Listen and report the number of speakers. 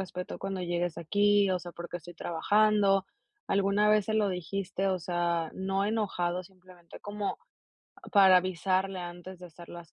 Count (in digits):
1